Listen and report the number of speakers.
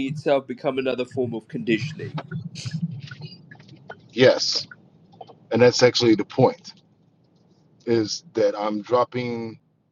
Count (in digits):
2